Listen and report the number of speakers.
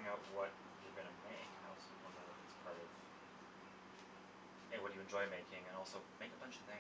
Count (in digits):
1